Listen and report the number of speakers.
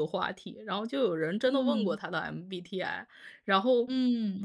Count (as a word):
two